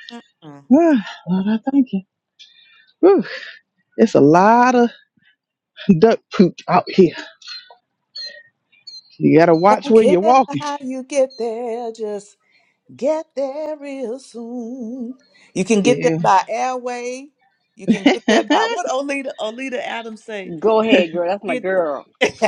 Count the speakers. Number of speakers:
3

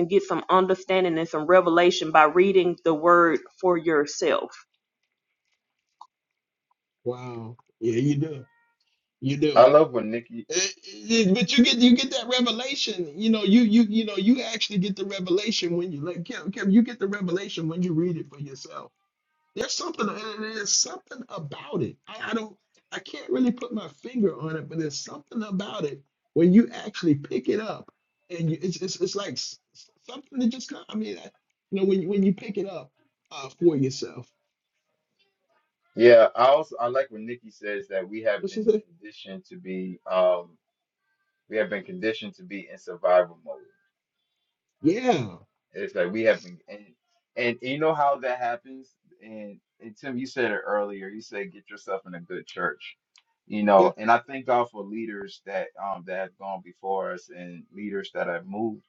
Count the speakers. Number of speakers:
3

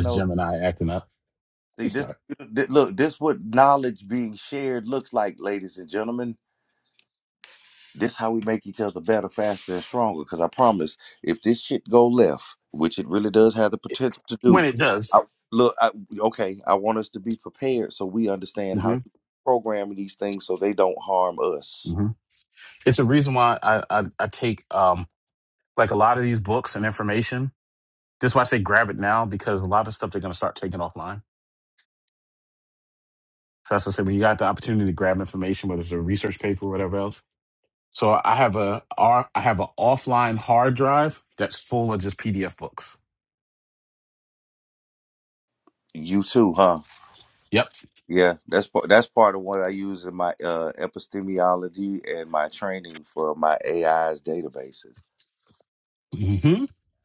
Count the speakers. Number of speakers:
2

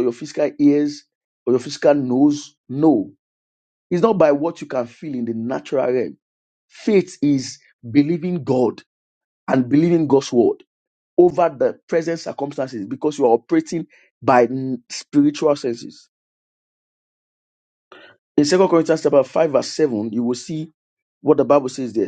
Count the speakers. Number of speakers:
1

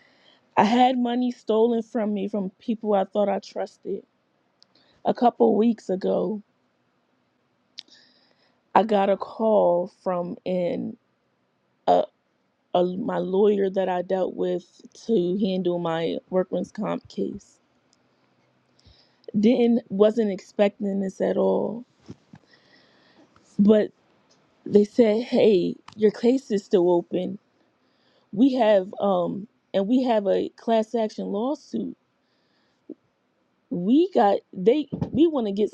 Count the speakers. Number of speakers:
1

